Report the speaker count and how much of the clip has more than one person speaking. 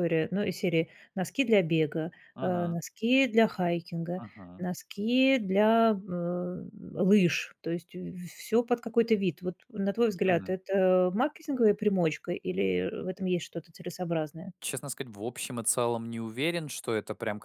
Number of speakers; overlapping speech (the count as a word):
two, about 4%